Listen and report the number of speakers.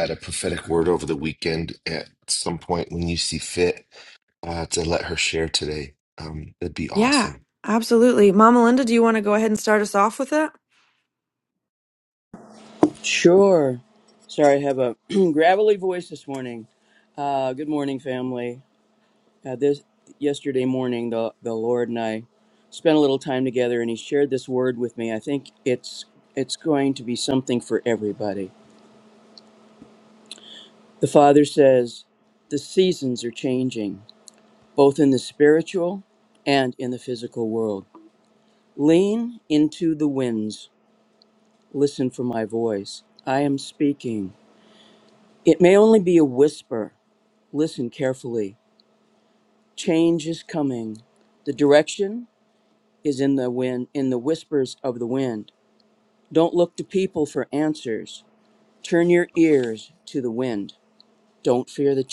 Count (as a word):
three